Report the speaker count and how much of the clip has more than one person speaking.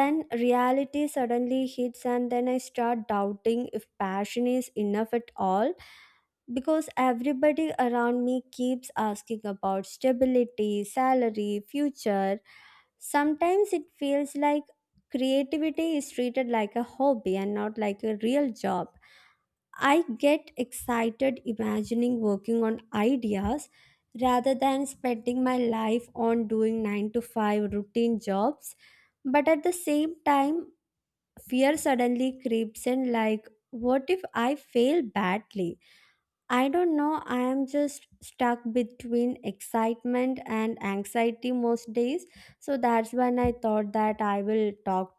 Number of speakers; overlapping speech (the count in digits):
1, no overlap